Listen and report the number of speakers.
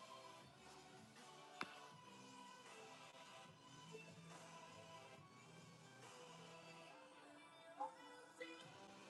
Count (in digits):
0